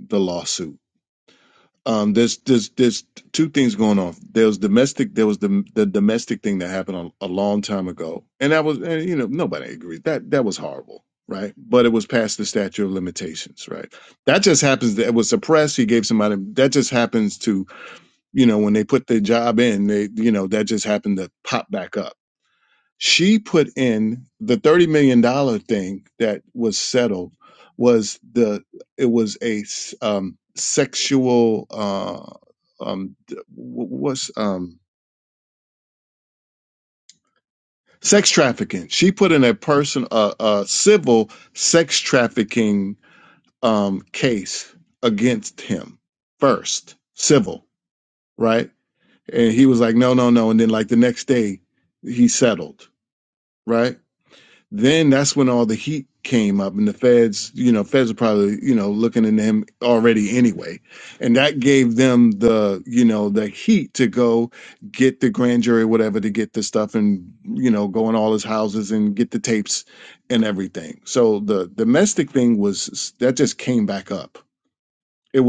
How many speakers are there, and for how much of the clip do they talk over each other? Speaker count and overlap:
one, no overlap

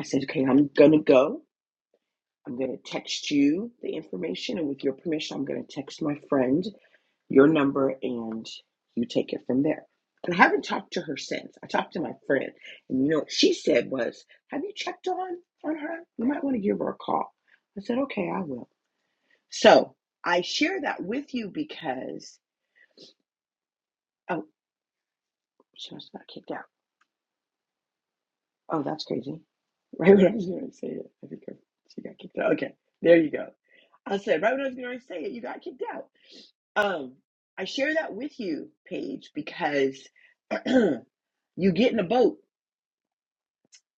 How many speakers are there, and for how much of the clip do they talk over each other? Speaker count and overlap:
one, no overlap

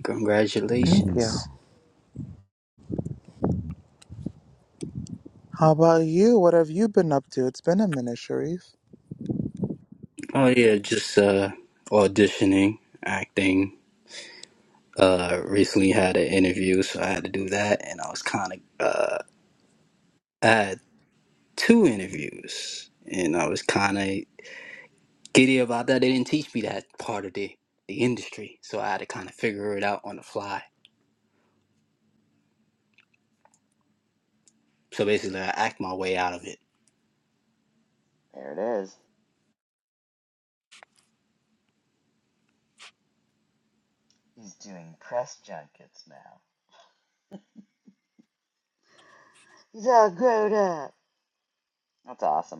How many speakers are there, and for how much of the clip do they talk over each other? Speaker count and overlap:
three, no overlap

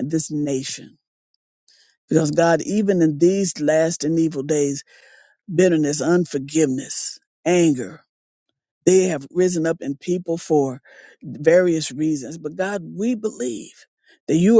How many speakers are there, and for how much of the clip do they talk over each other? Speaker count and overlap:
one, no overlap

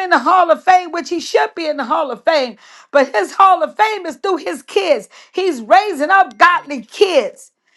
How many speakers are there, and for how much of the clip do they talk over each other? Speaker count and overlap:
one, no overlap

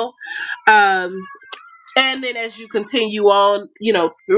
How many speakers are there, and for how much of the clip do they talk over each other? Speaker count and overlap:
one, no overlap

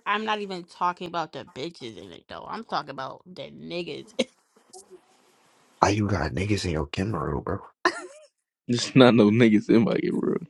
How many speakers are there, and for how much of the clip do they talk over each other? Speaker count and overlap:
three, no overlap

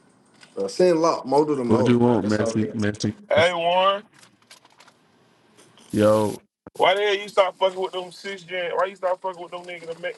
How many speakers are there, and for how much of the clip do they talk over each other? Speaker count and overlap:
three, about 11%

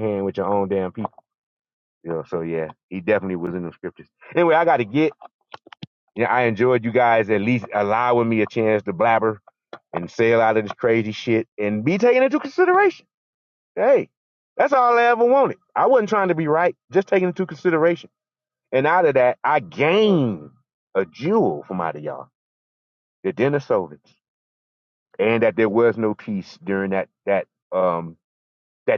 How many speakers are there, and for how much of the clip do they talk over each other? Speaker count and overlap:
one, no overlap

